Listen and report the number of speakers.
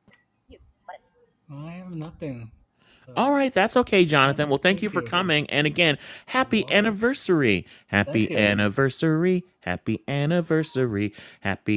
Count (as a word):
two